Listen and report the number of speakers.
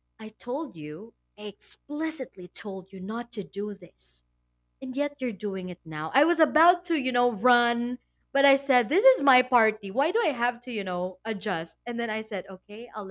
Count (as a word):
one